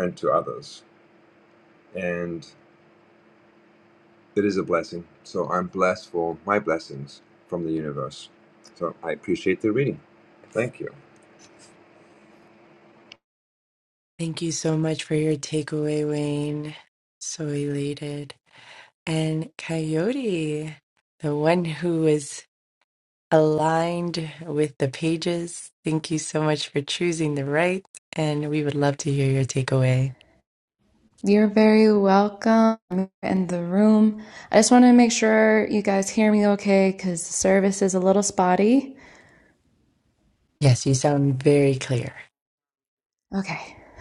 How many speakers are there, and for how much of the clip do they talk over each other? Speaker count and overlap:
three, no overlap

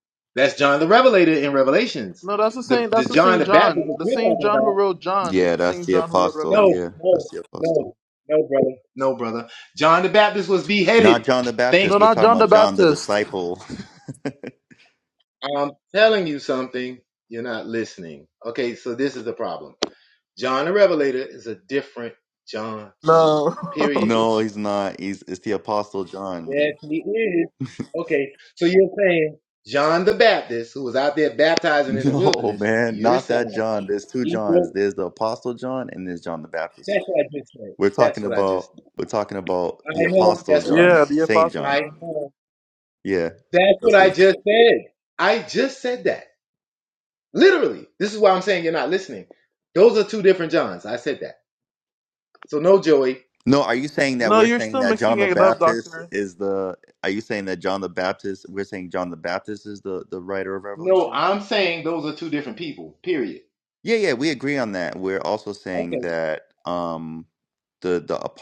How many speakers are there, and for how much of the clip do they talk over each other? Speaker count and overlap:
three, about 21%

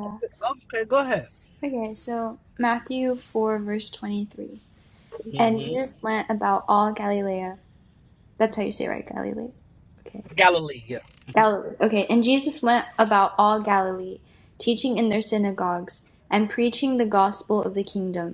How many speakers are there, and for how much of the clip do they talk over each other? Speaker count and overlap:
two, about 3%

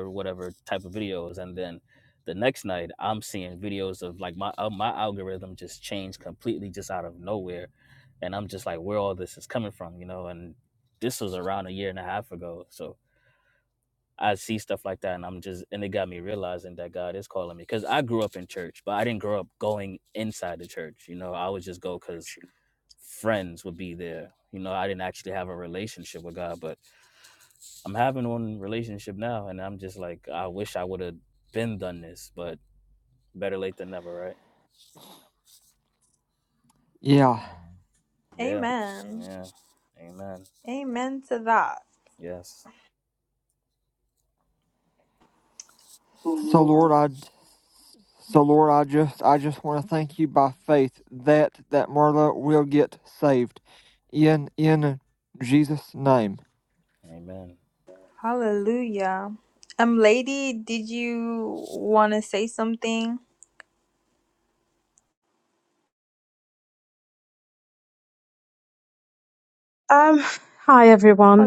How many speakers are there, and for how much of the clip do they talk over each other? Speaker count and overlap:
four, about 1%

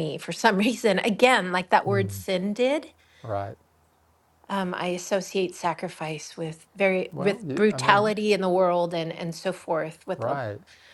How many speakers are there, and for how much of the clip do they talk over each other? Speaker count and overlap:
two, about 10%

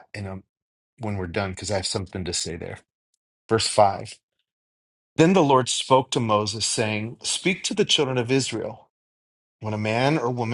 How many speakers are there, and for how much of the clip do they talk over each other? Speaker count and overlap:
one, no overlap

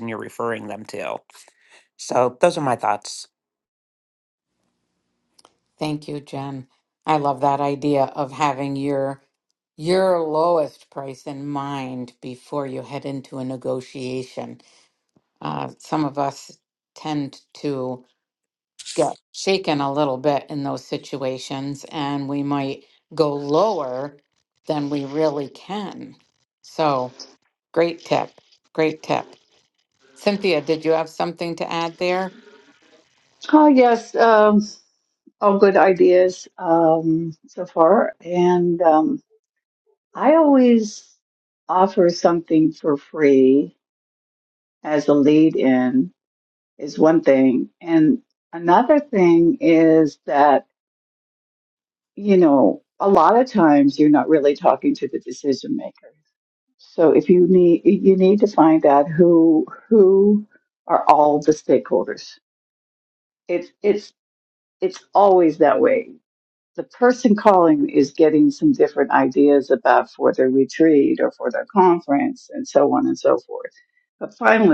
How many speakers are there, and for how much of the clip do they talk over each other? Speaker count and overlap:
three, no overlap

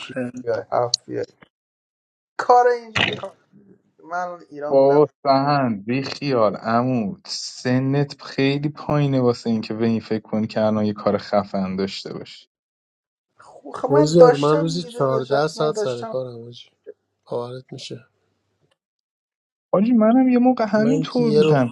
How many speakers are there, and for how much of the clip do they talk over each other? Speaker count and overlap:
three, about 16%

